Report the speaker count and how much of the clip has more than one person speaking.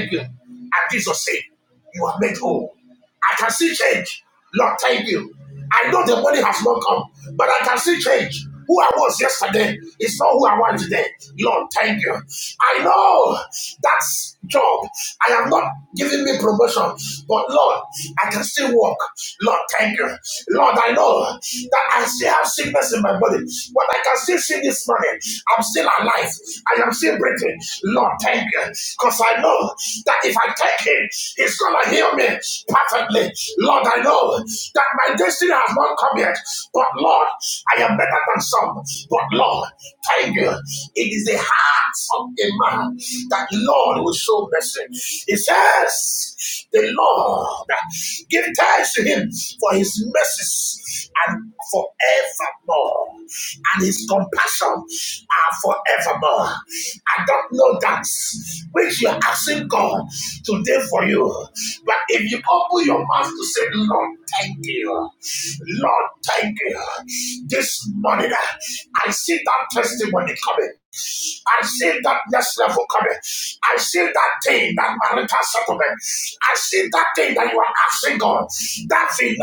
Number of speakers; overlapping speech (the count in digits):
1, no overlap